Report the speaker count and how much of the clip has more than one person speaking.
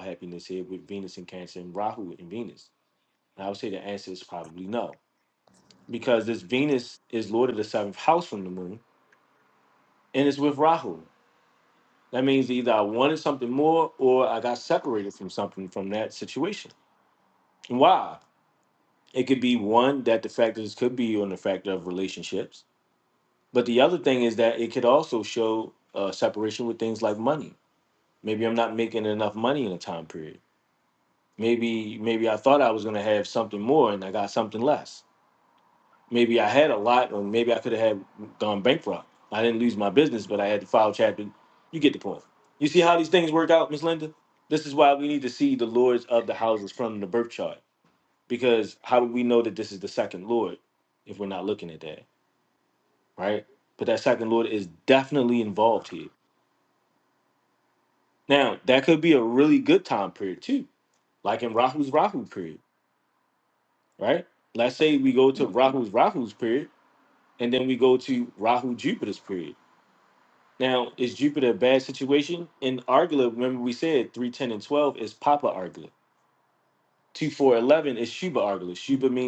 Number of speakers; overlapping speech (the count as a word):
one, no overlap